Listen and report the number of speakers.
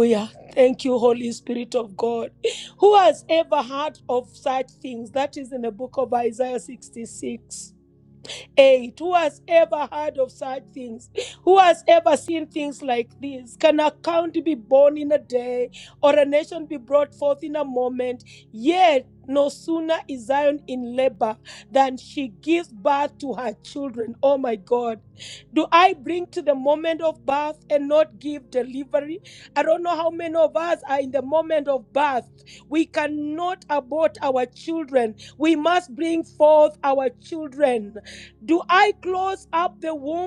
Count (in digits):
1